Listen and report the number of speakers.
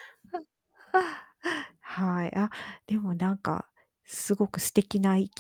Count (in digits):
1